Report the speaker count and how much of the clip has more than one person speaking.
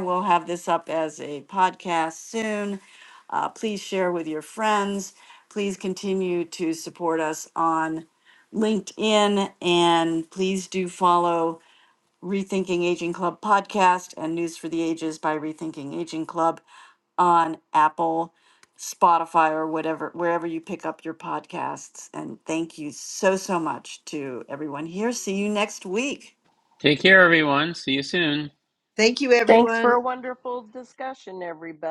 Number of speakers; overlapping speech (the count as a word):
four, about 2%